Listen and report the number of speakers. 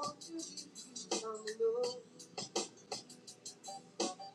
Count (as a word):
zero